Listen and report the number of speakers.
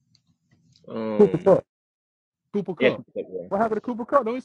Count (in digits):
2